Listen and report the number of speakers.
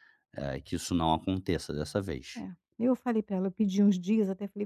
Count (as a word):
two